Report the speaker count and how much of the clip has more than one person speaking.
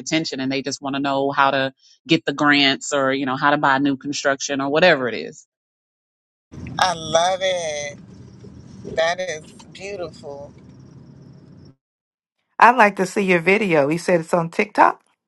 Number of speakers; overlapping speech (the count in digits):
3, no overlap